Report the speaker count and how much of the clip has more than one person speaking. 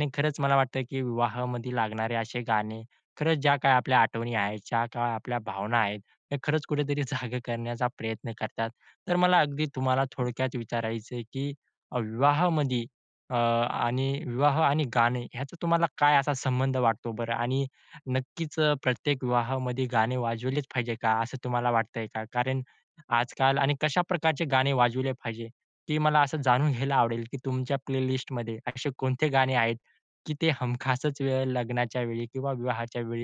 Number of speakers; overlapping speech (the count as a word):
one, no overlap